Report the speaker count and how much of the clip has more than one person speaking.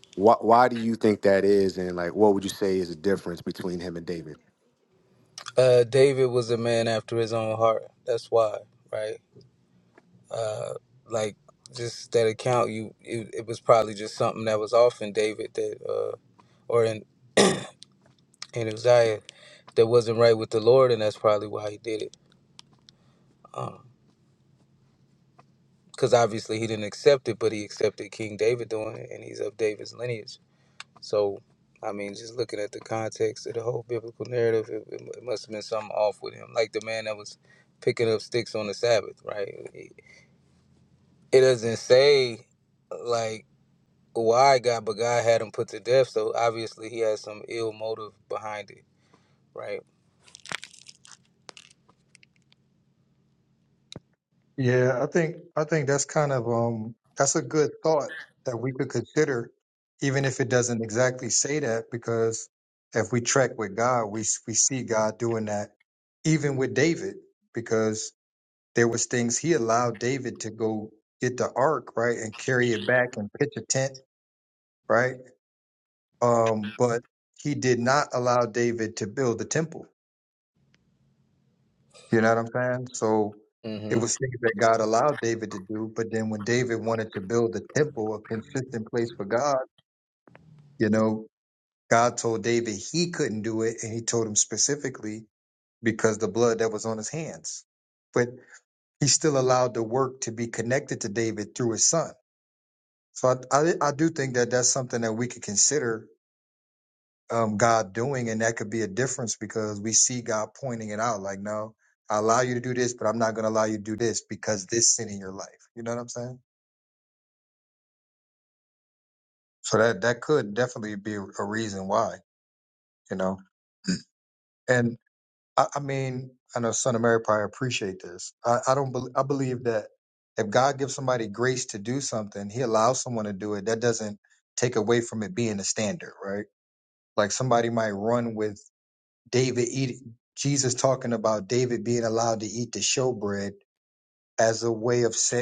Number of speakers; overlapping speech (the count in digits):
3, under 1%